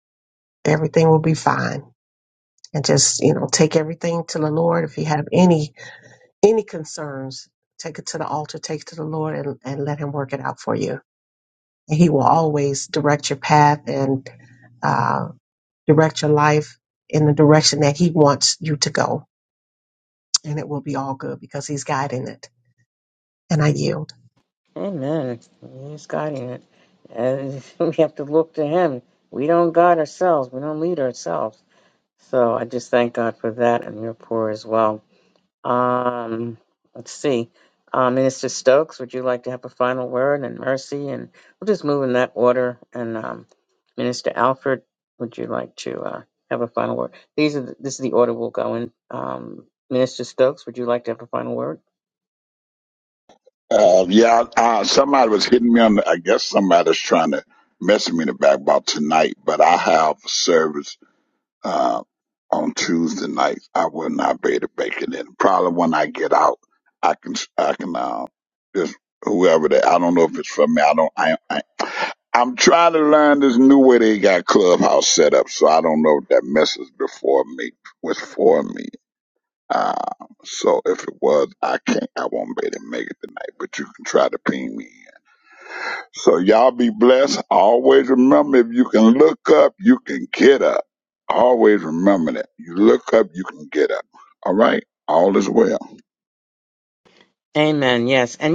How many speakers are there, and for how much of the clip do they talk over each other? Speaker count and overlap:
3, no overlap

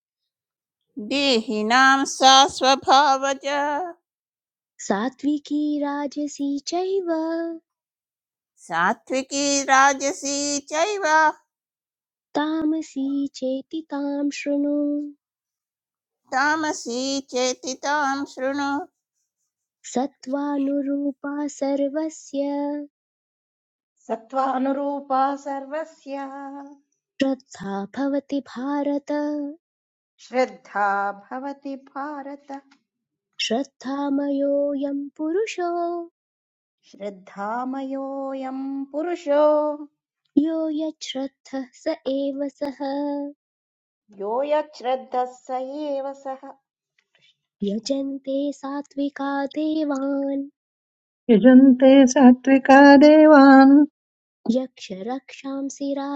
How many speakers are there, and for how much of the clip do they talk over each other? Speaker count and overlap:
4, no overlap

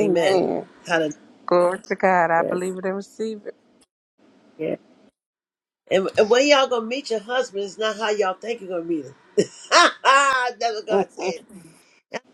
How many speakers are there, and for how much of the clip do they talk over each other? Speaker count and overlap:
2, about 5%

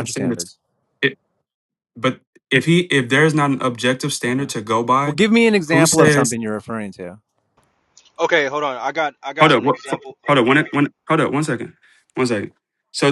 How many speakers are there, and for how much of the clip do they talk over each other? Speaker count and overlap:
3, about 20%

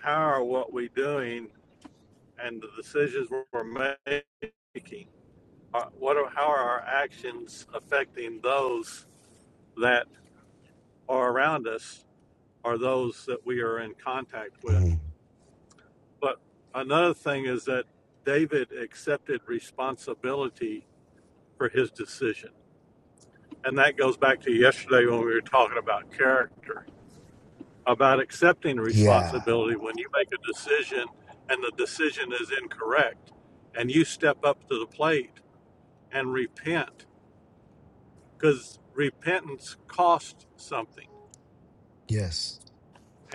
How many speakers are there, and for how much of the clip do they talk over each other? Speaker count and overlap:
2, about 2%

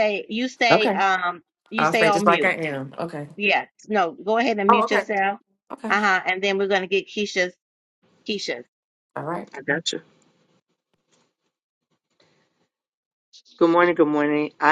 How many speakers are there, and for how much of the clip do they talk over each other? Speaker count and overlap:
3, about 10%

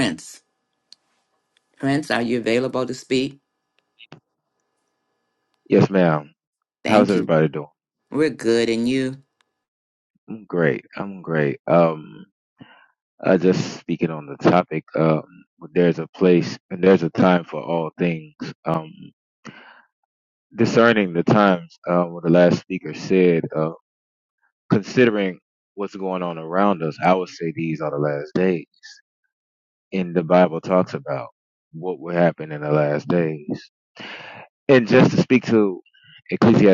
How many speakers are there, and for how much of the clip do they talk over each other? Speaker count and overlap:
2, about 1%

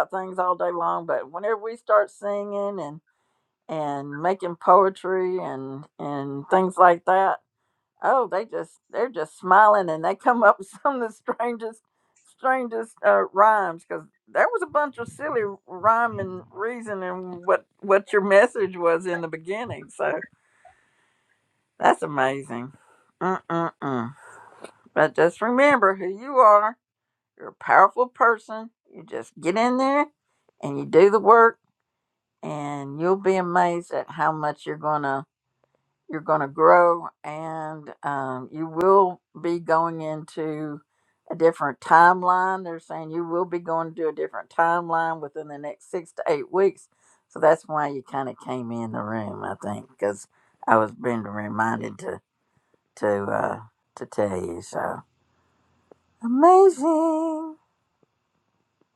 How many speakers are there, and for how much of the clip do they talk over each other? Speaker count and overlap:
1, no overlap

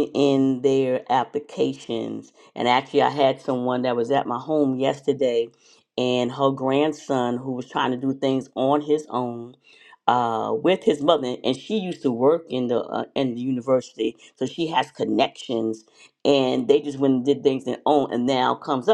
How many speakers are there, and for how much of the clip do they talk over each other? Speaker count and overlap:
1, no overlap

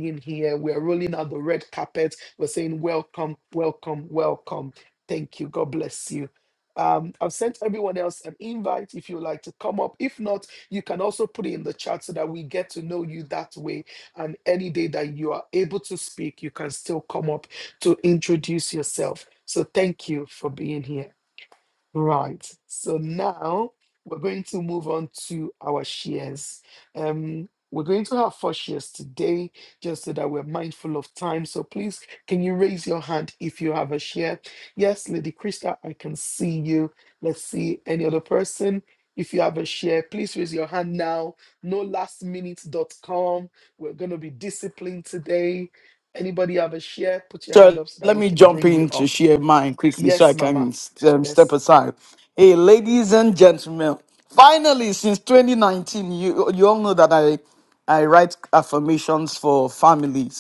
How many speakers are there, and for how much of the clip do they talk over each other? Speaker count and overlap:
2, about 4%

